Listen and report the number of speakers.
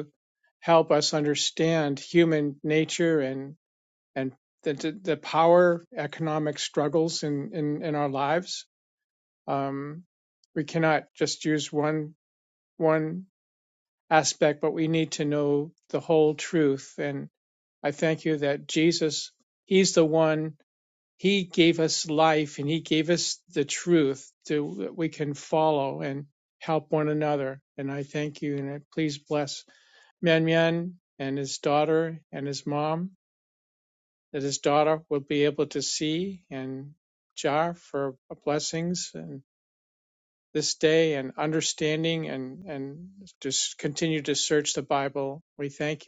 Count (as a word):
one